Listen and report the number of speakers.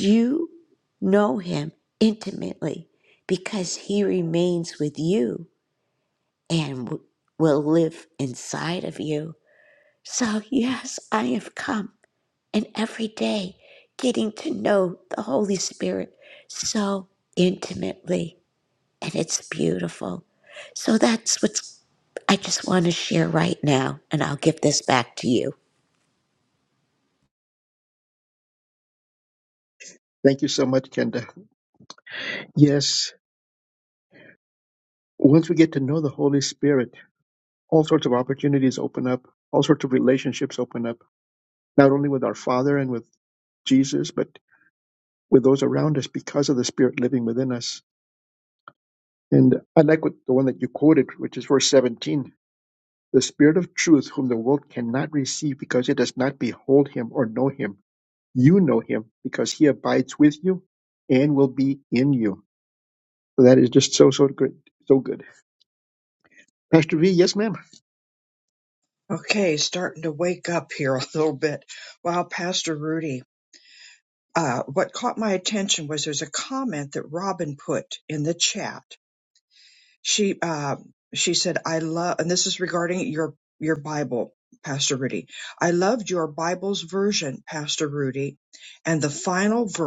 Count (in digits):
3